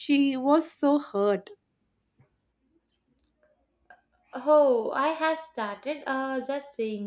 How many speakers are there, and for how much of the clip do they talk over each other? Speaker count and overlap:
2, no overlap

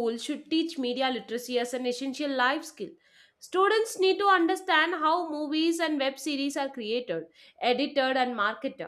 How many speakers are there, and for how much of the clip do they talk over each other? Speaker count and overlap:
1, no overlap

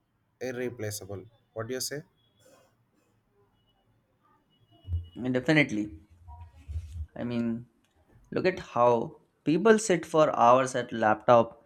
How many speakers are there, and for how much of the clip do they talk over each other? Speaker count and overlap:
2, no overlap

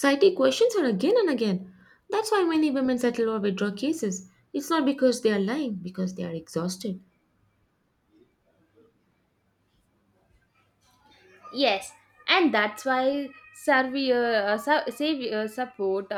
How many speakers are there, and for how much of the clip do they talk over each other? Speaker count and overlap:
2, no overlap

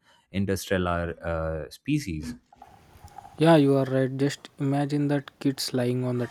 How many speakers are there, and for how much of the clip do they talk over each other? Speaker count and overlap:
2, no overlap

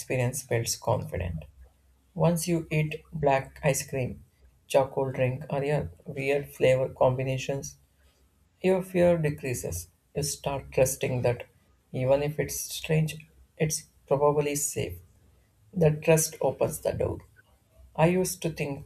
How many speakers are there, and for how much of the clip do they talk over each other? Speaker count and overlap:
1, no overlap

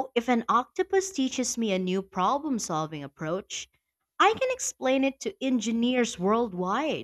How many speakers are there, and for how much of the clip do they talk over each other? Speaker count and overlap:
1, no overlap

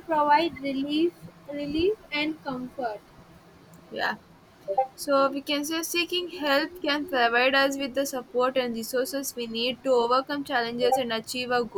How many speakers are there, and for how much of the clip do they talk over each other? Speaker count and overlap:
2, no overlap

